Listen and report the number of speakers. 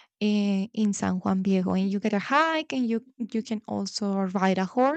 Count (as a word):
one